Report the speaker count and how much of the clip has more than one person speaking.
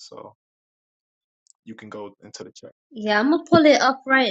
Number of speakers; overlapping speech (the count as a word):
two, no overlap